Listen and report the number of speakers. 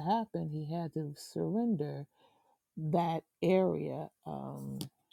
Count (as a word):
one